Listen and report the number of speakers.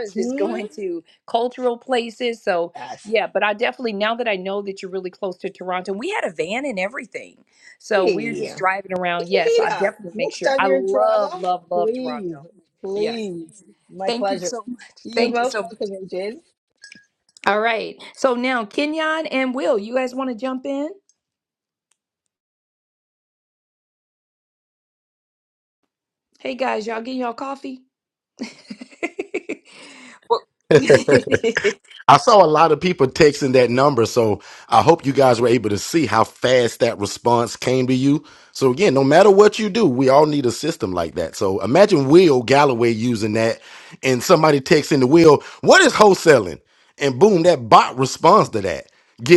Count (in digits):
3